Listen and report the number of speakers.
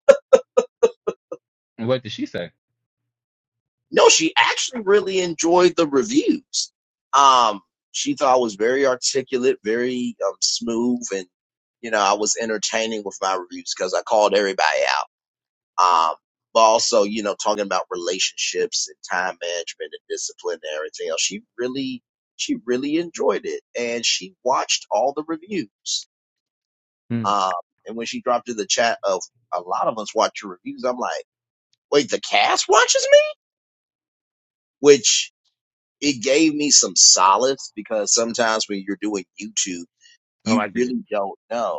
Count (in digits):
2